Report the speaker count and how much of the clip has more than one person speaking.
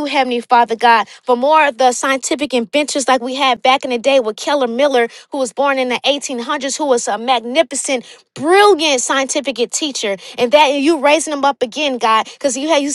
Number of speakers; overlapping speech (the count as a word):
one, no overlap